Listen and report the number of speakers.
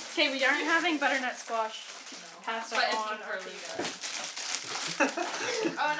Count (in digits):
2